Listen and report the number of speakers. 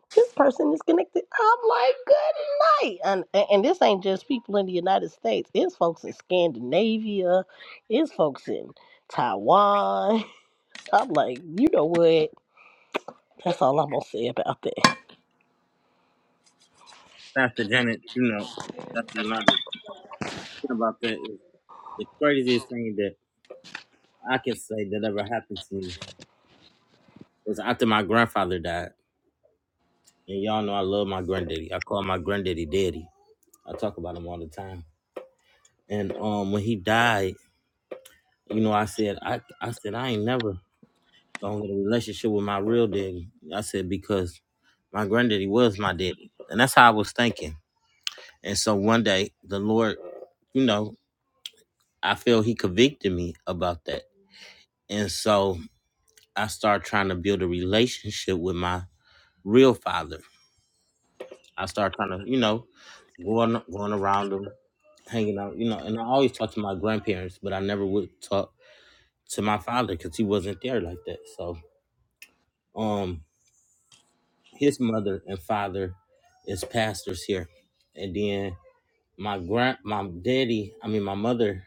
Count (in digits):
2